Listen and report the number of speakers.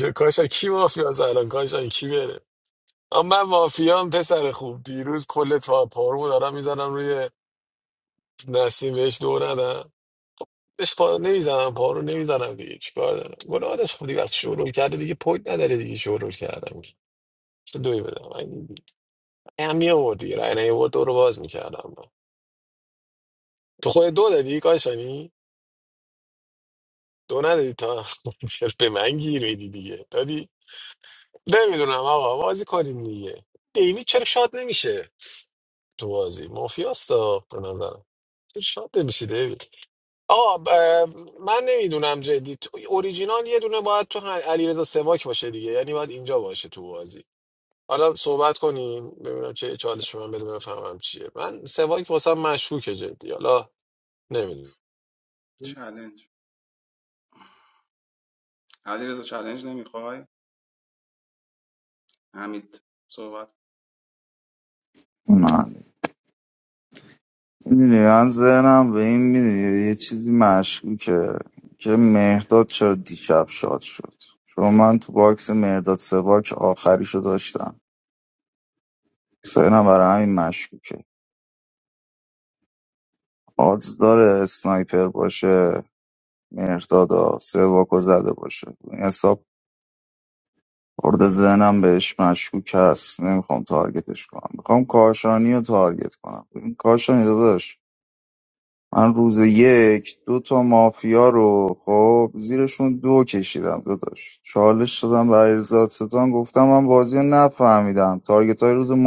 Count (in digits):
3